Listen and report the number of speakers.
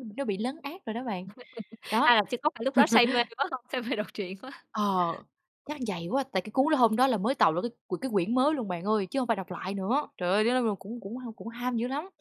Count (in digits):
2